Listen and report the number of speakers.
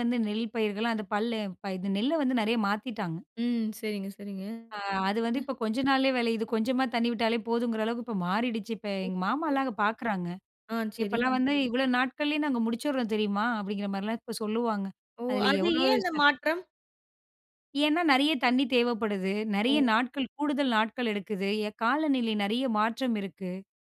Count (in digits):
2